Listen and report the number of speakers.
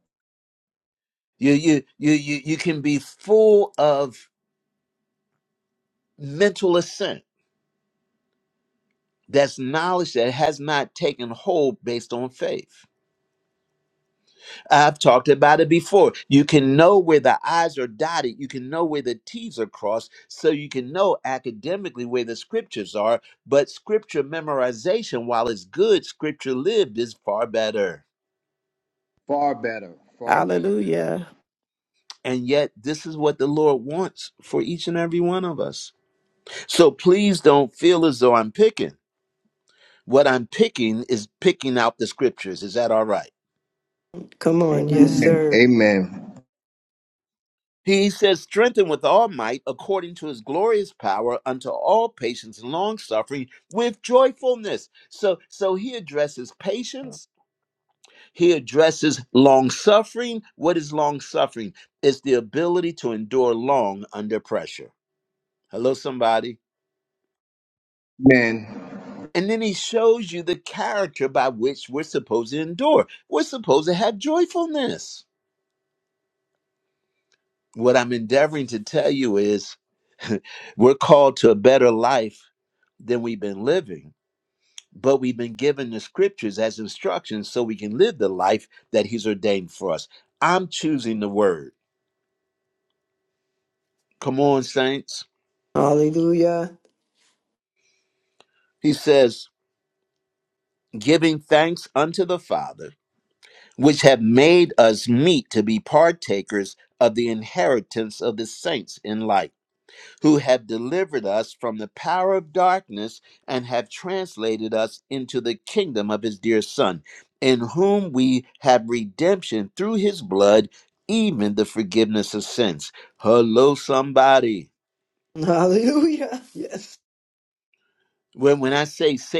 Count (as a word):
four